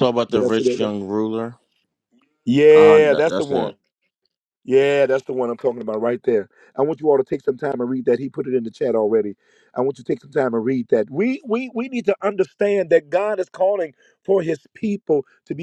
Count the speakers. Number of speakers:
2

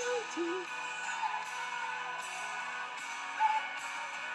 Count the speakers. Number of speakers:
0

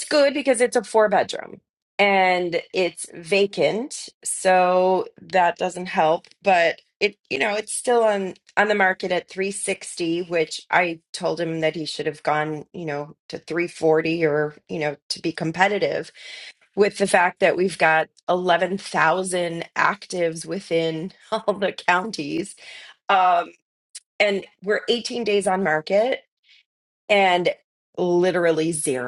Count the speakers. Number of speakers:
1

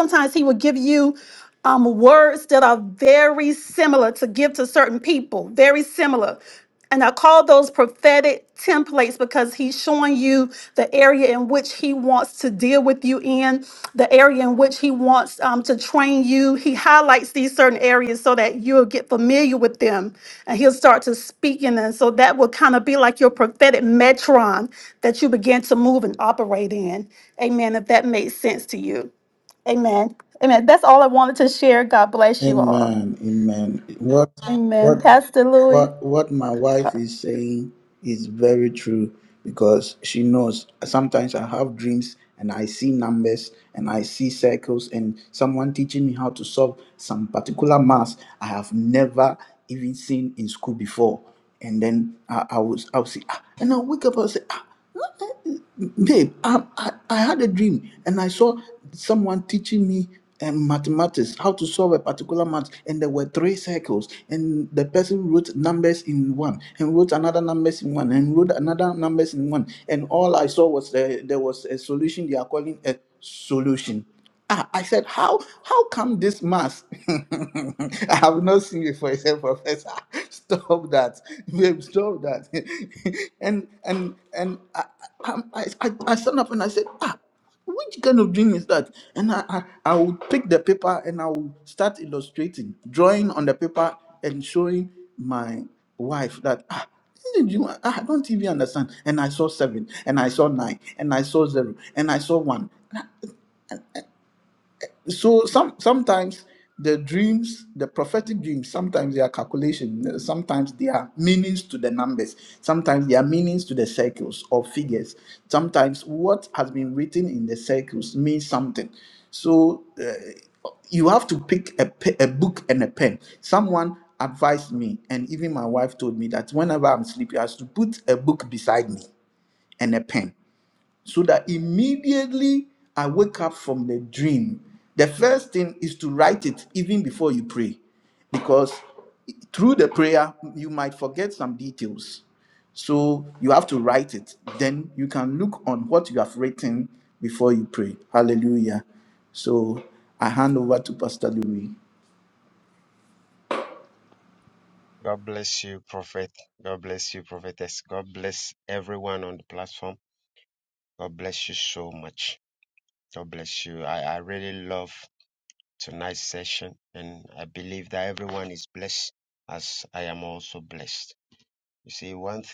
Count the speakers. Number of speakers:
3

